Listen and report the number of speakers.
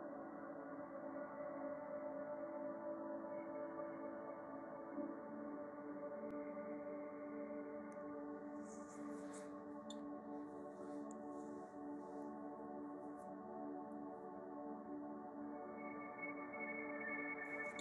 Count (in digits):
0